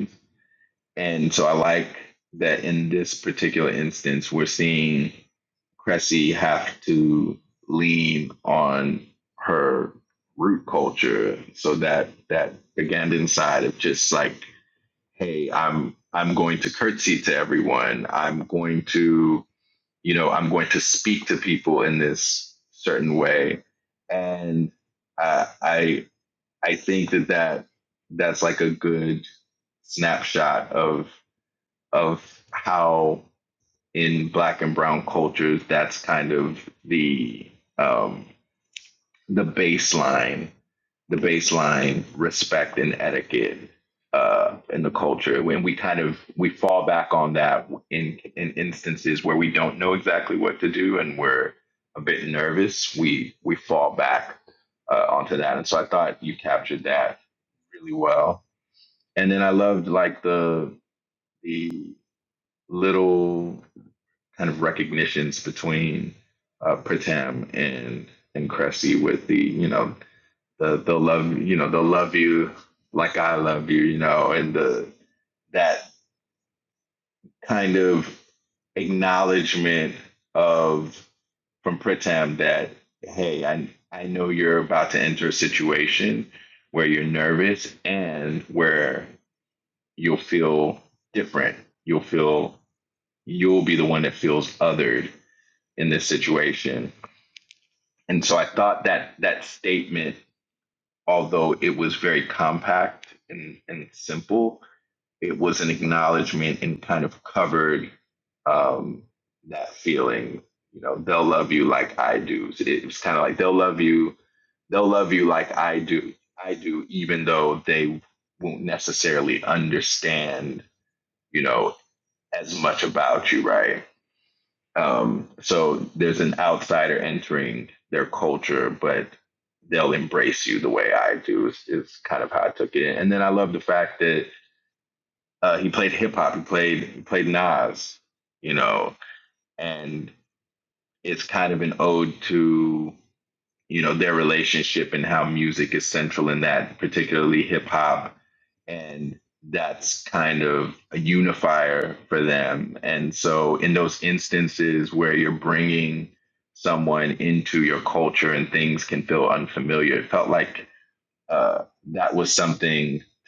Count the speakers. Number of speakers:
1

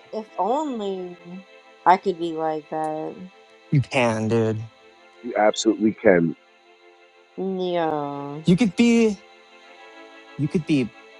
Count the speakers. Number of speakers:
3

